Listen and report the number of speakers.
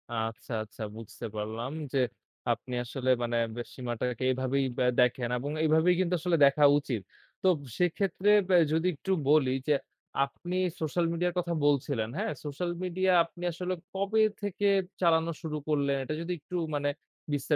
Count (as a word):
one